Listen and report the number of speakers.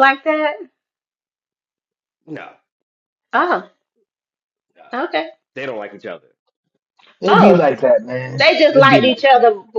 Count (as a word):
three